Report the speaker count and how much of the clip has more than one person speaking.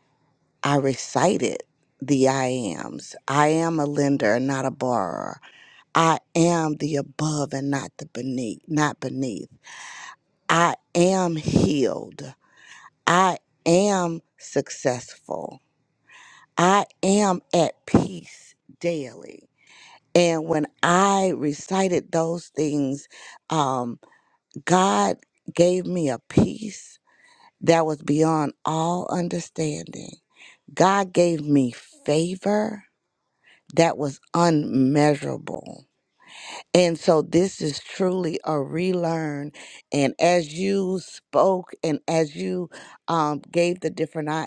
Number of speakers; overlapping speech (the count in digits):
1, no overlap